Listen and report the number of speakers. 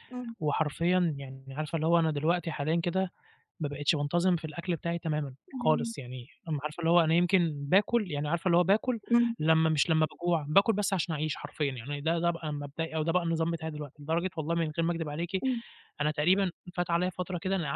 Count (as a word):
two